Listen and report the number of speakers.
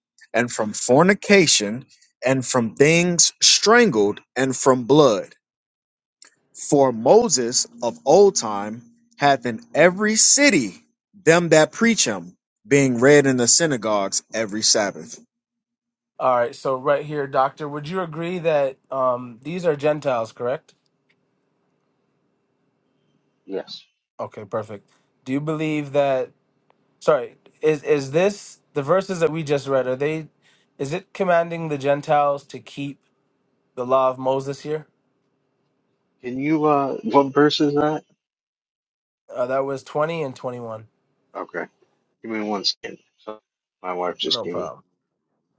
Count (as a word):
three